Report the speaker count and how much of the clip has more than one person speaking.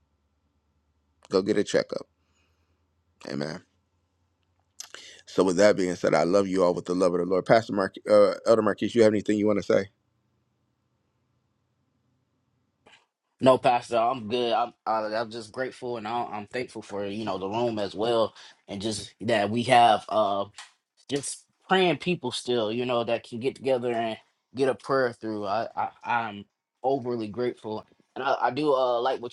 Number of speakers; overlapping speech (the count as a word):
two, no overlap